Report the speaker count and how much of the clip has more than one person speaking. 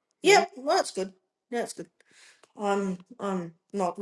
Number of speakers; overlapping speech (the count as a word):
one, no overlap